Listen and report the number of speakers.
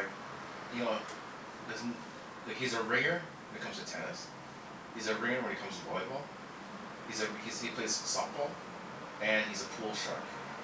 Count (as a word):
one